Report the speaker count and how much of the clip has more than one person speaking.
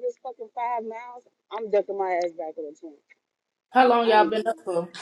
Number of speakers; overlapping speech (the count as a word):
two, about 7%